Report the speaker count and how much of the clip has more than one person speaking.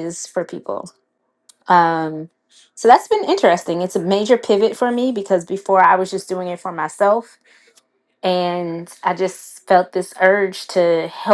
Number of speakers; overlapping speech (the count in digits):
1, no overlap